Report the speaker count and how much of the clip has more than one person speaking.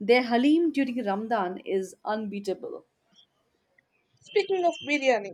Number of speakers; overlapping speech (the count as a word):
two, no overlap